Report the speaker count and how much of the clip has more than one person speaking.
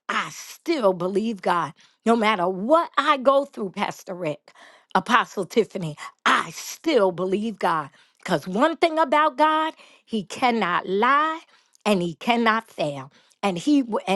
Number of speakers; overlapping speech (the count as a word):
one, no overlap